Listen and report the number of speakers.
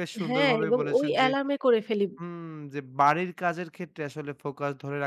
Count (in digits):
2